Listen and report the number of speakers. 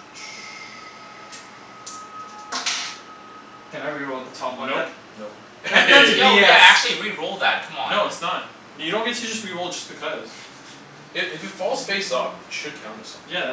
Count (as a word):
four